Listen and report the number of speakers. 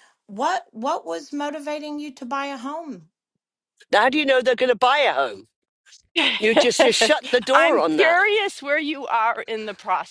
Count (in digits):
3